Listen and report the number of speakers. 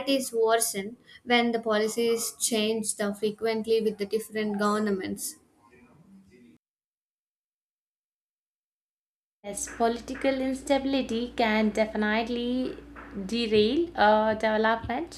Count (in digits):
2